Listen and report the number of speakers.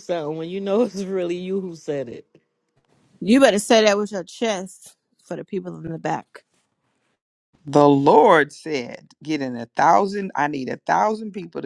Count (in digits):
3